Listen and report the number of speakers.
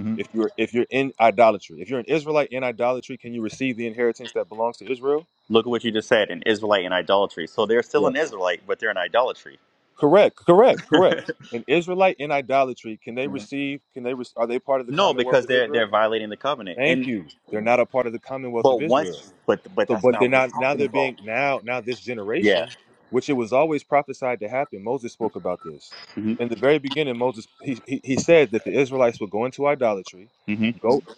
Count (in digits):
2